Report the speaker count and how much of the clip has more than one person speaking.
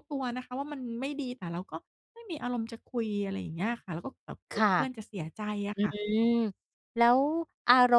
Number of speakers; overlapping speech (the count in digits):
2, about 6%